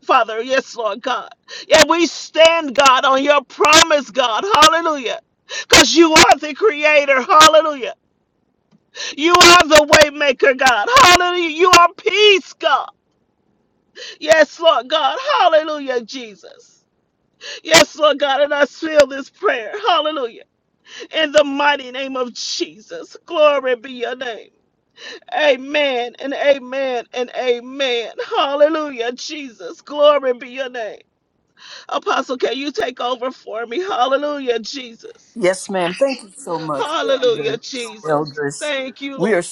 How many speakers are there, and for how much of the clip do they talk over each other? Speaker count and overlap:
two, about 3%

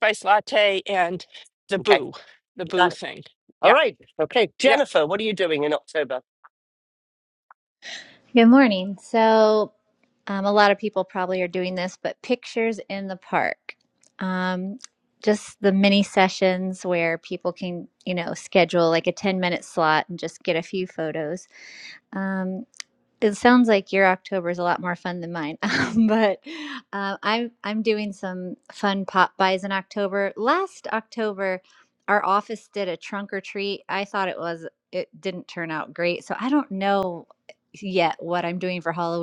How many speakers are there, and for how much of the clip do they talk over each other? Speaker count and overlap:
three, about 2%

